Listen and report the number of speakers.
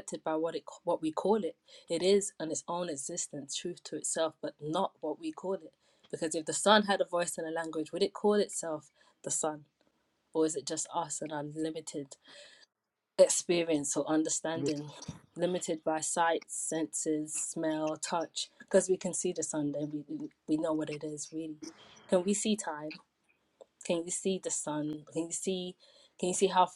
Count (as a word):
one